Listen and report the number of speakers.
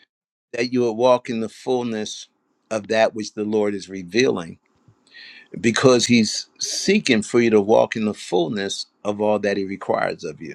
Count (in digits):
1